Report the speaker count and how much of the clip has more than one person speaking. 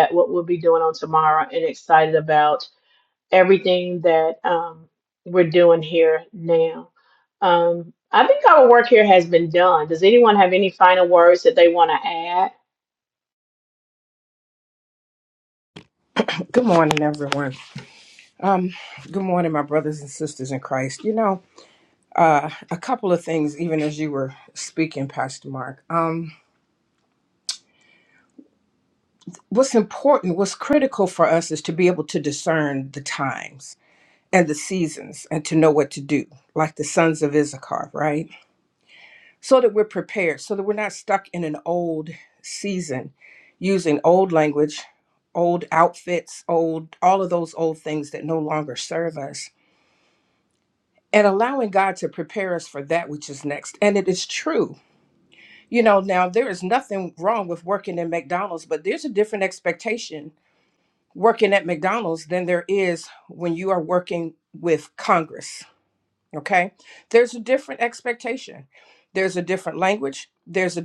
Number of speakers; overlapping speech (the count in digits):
2, no overlap